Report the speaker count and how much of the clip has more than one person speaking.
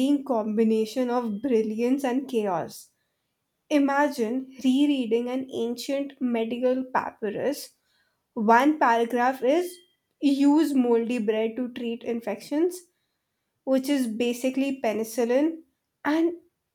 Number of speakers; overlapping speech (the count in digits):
1, no overlap